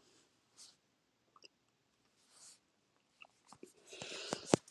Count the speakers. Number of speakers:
zero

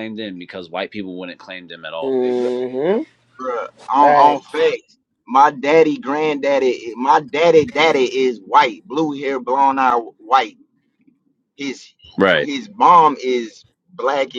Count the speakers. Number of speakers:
three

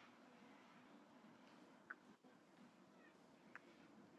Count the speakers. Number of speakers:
zero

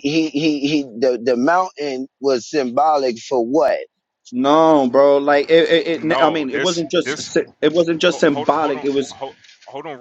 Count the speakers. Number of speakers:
three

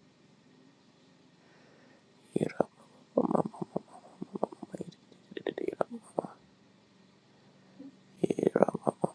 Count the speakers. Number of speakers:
zero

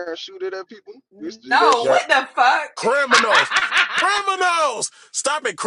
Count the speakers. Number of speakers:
three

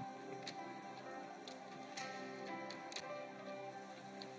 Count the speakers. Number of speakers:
zero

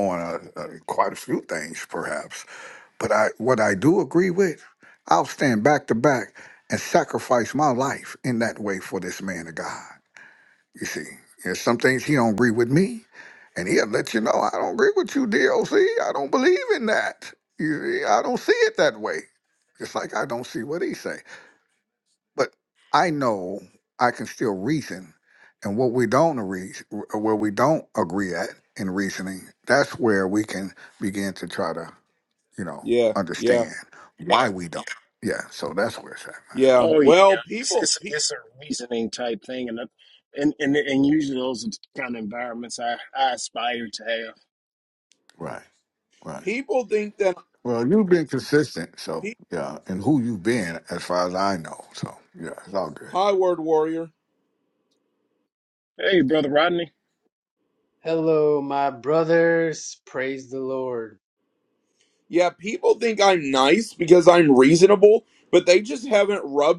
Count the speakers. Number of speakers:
four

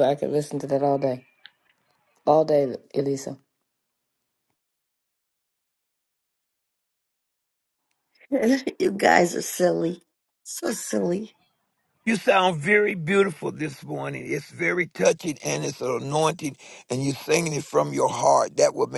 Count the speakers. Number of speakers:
three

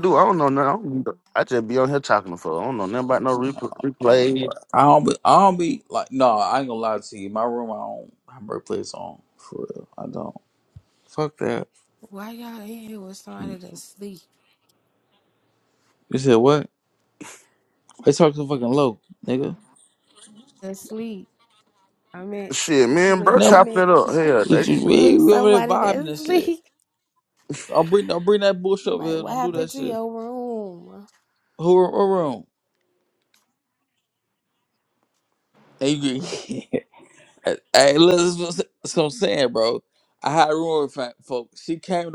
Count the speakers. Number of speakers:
three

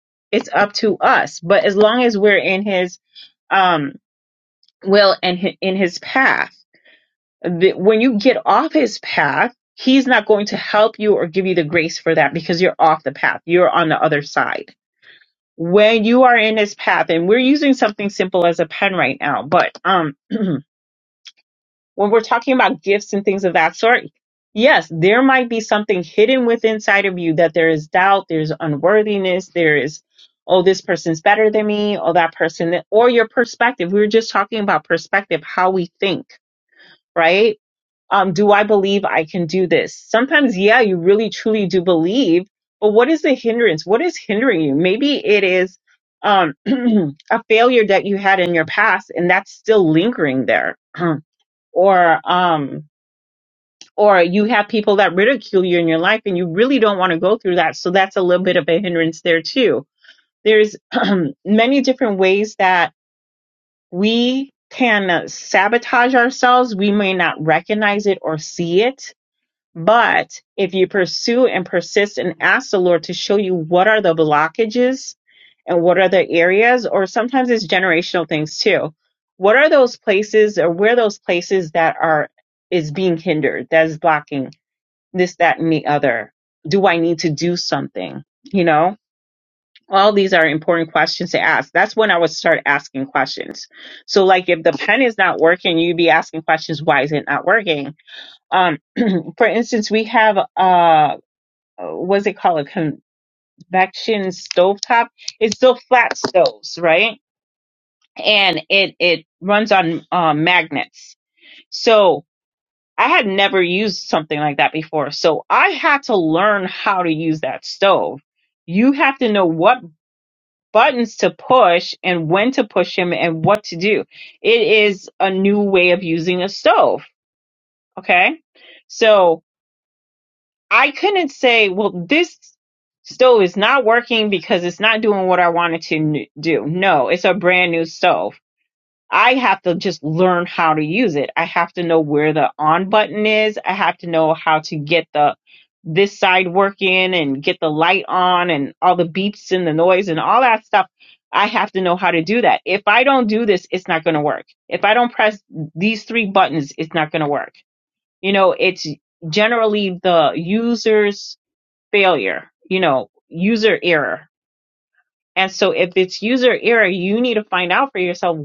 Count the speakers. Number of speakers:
one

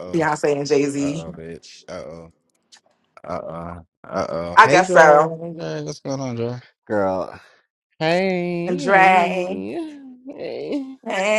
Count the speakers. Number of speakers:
three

